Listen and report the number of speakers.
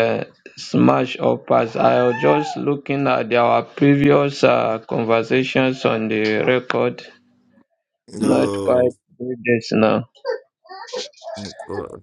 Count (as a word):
two